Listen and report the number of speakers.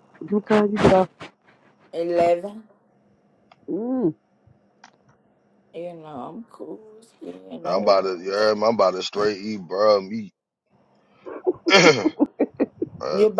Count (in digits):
3